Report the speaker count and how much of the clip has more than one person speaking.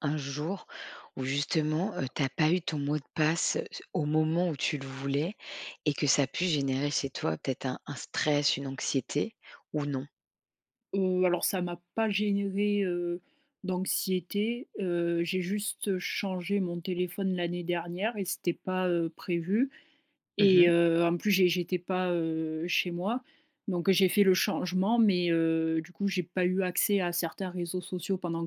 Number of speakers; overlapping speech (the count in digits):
2, about 1%